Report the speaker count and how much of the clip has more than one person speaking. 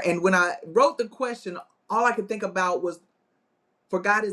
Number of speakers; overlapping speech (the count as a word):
one, no overlap